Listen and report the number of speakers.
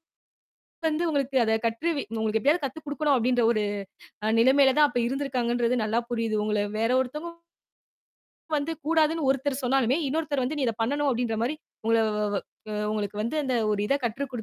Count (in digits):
1